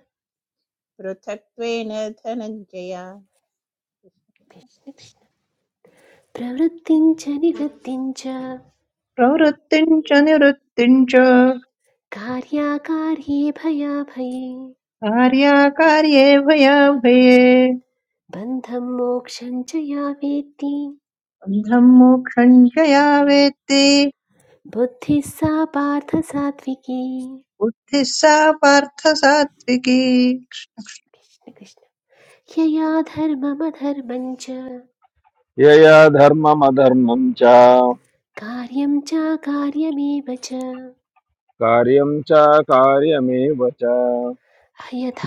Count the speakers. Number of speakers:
four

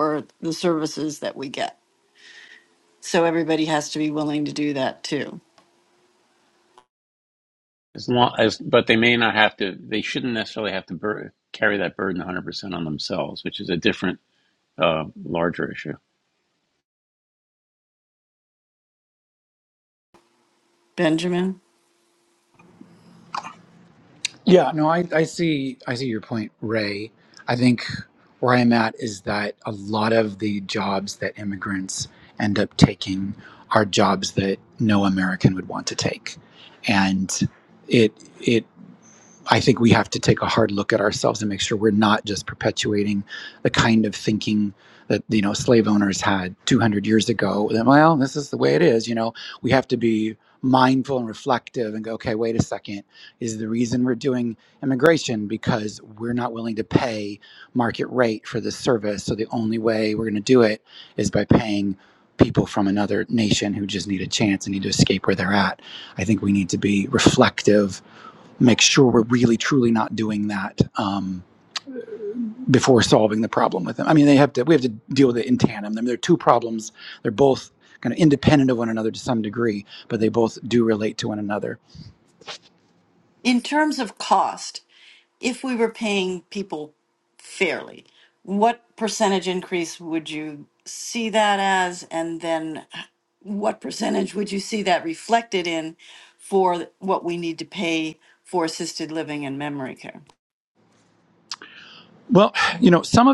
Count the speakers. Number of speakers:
three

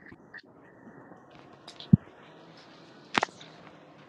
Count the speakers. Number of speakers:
zero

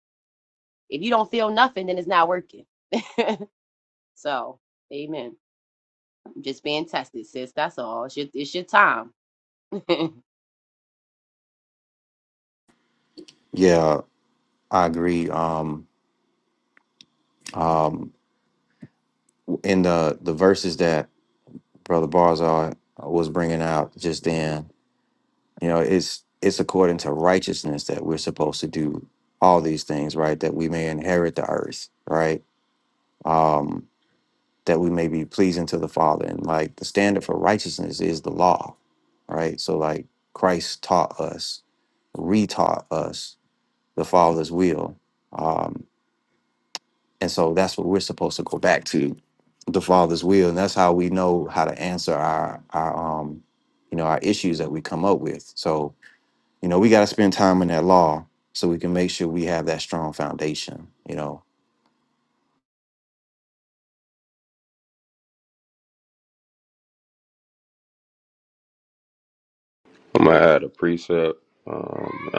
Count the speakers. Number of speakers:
three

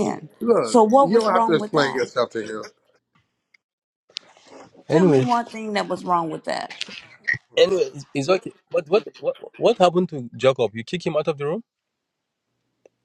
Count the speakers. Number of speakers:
three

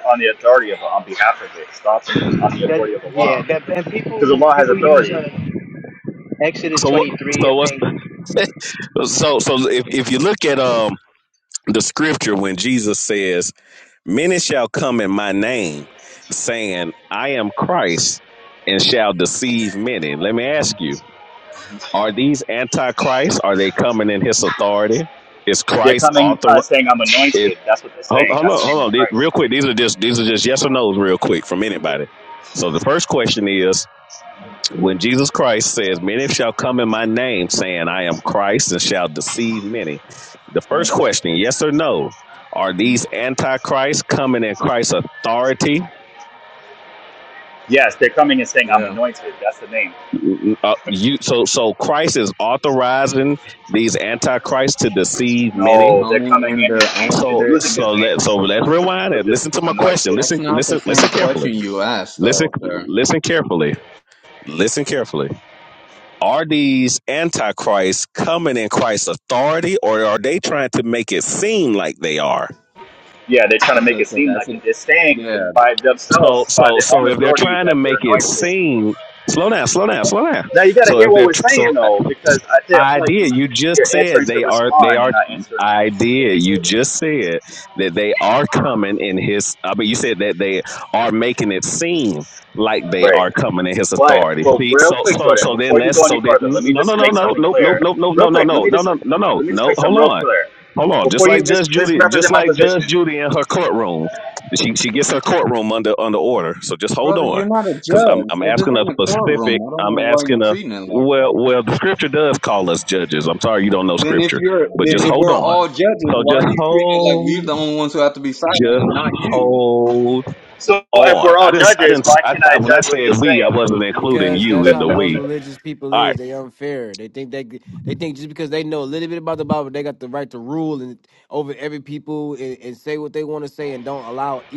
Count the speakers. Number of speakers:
five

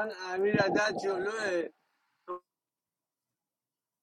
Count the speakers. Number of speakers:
one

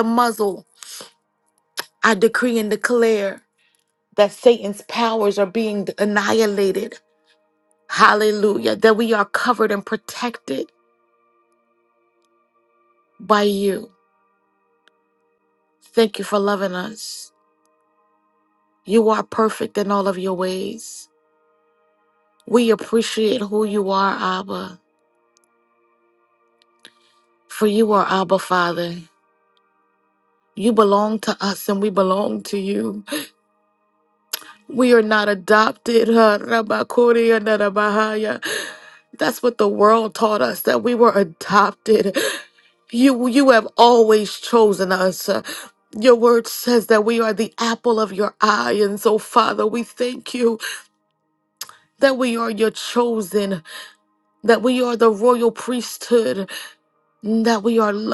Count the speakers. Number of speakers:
one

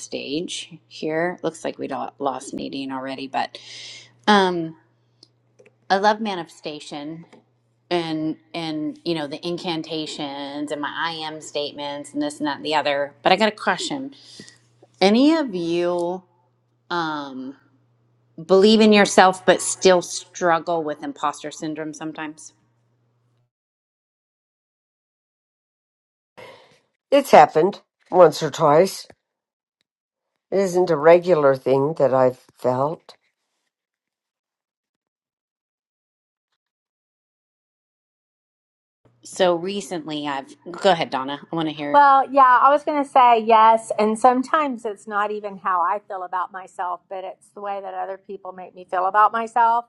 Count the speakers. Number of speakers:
three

